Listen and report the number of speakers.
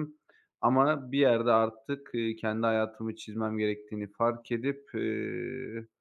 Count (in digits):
1